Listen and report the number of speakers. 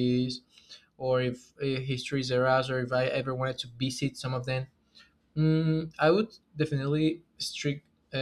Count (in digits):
1